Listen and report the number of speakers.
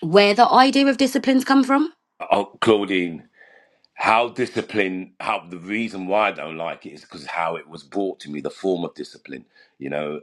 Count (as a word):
two